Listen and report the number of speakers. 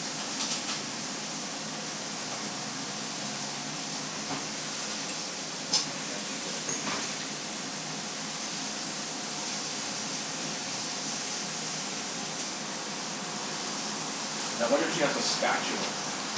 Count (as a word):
one